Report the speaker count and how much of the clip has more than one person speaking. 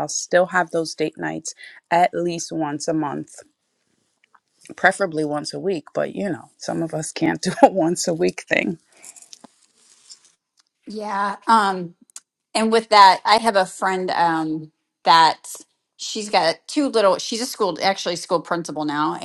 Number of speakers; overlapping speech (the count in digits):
2, no overlap